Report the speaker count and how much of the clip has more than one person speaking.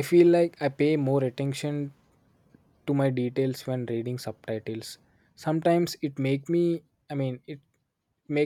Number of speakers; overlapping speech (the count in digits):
1, no overlap